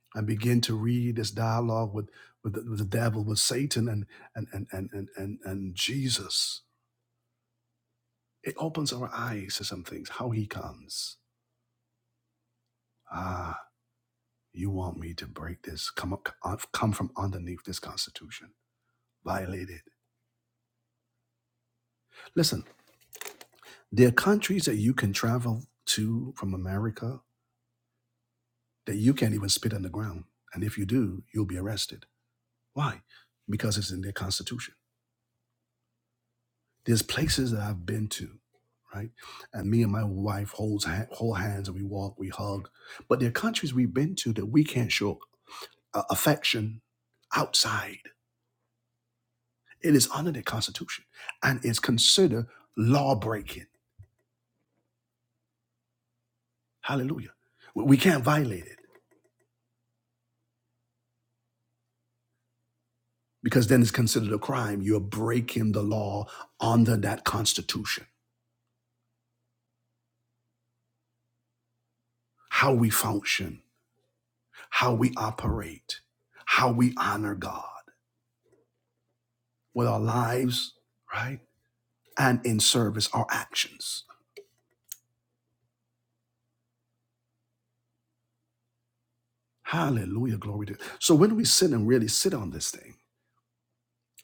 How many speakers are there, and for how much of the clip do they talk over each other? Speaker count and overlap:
one, no overlap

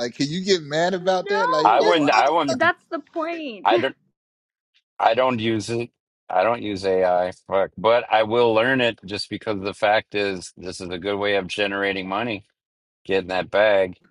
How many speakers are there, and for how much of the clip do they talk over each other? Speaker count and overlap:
three, about 13%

